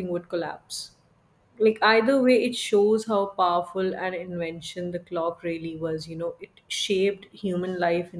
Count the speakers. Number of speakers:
one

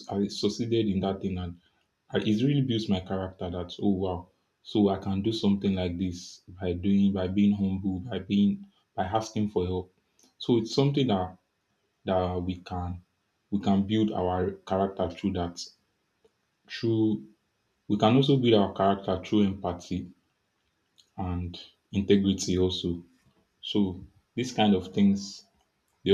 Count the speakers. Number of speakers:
one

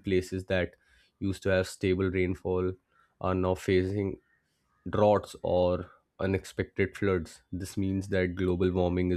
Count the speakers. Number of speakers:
one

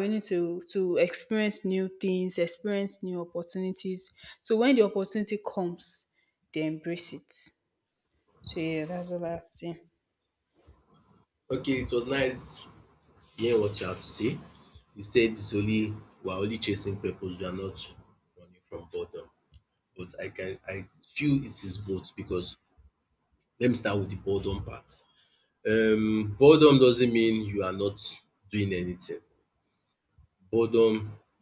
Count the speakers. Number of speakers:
two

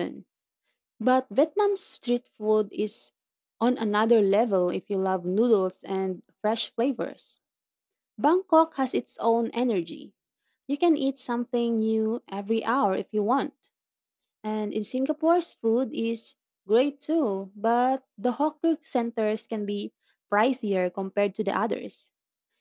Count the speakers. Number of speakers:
one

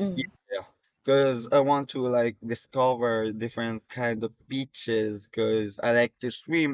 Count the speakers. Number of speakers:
one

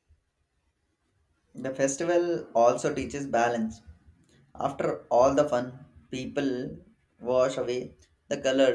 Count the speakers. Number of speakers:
one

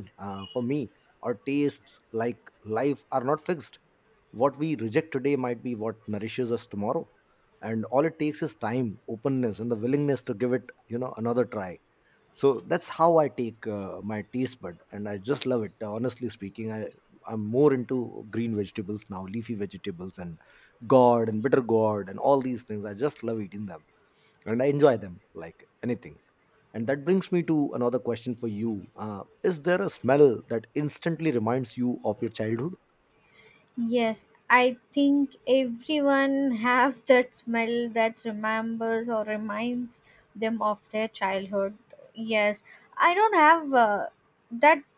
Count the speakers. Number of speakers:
two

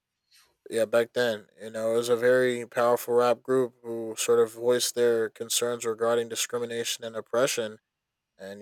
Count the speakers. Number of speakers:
one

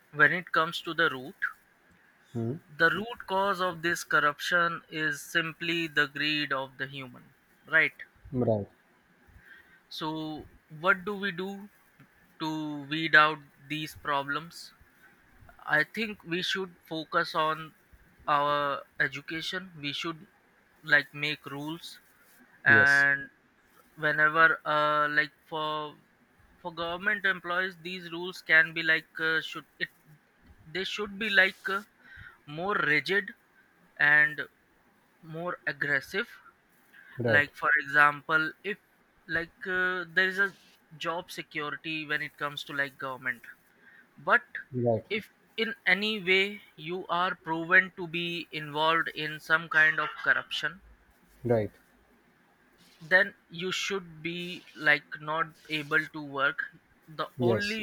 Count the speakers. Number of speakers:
two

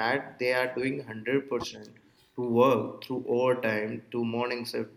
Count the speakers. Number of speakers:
one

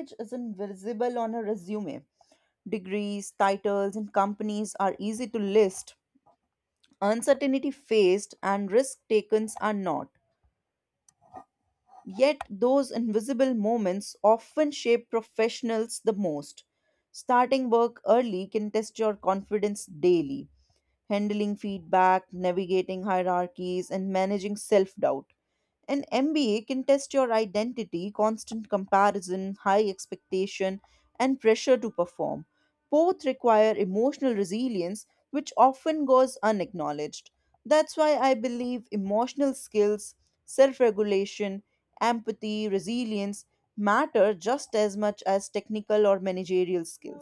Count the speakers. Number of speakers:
one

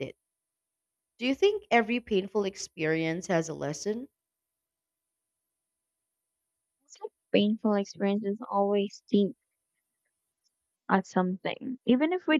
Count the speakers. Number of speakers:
two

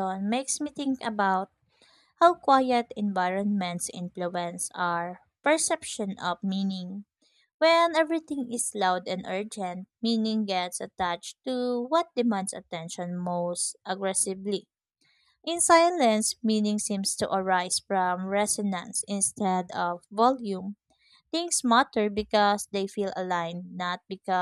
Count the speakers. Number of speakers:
one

